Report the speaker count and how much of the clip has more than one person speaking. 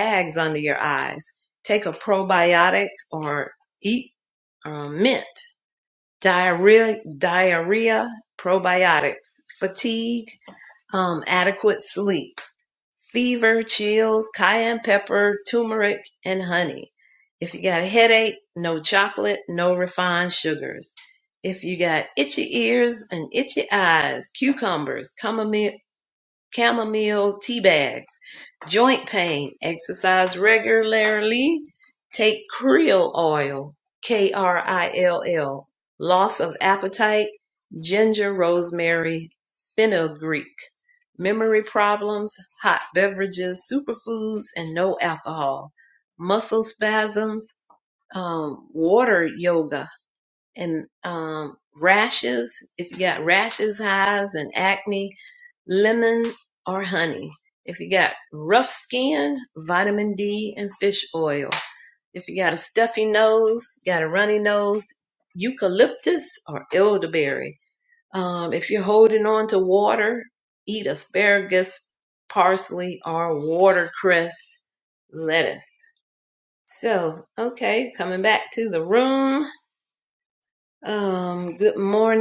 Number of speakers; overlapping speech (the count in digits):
1, no overlap